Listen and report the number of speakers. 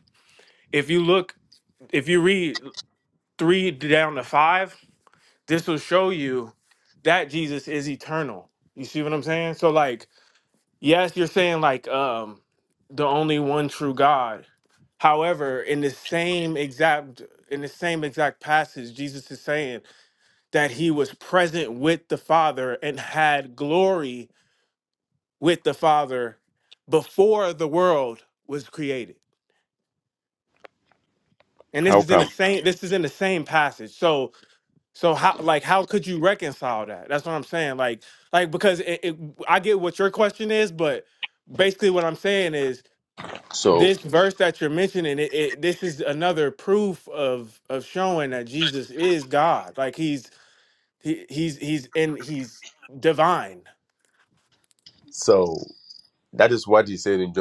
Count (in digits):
2